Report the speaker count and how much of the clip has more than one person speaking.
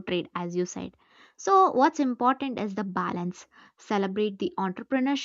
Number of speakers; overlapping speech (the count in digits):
1, no overlap